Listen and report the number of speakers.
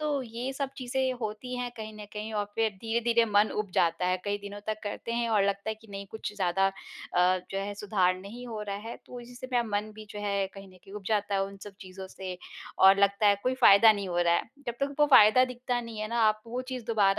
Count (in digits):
1